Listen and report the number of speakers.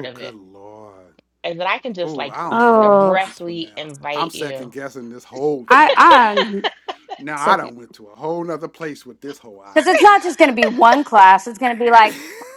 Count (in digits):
3